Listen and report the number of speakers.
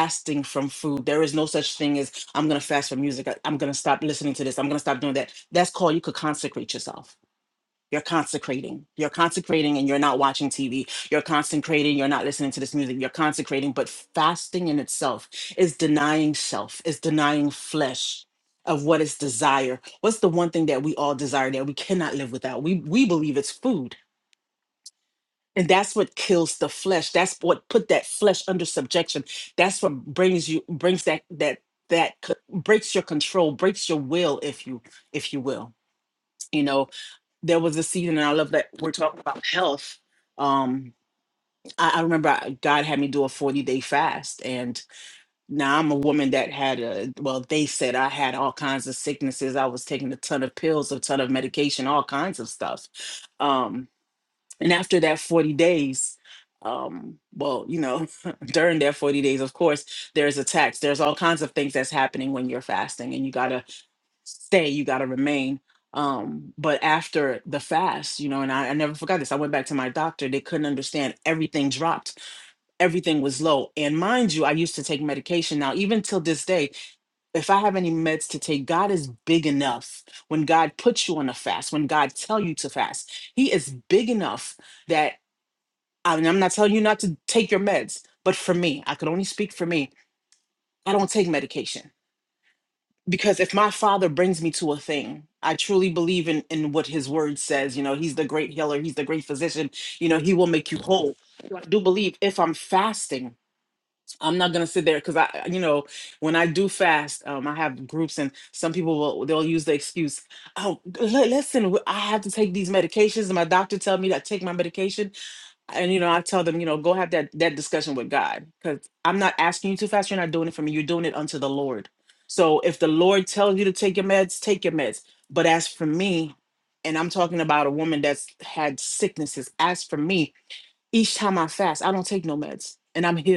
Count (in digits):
1